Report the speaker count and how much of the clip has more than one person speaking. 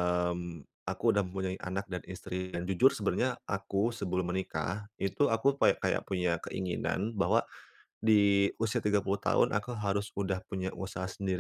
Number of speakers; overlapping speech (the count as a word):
one, no overlap